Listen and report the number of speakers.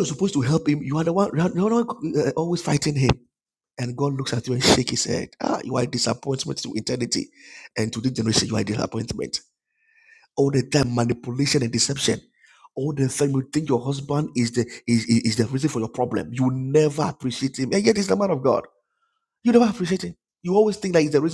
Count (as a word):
one